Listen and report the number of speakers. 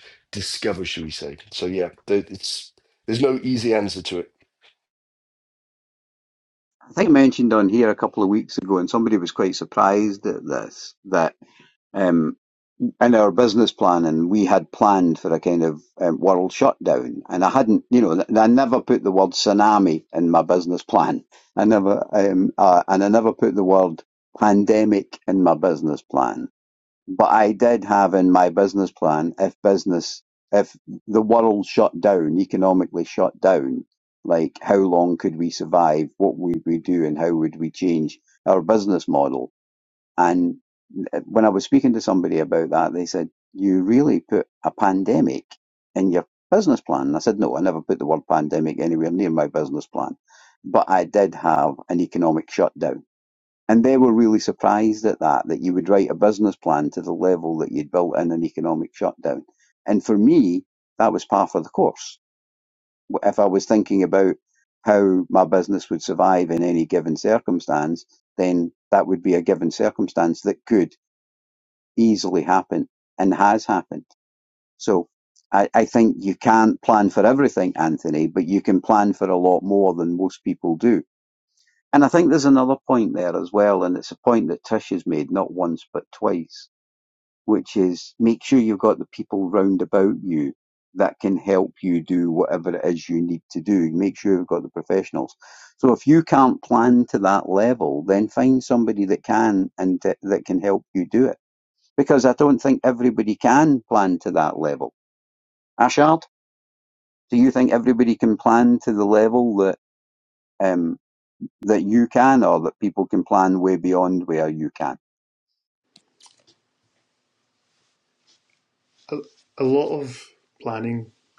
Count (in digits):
3